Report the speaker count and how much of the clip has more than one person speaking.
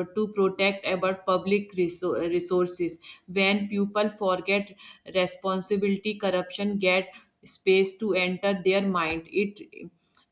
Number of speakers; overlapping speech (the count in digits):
1, no overlap